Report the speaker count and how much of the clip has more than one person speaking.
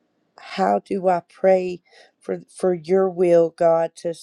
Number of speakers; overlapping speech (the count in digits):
1, no overlap